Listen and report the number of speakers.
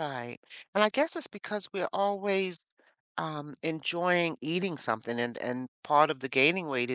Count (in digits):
1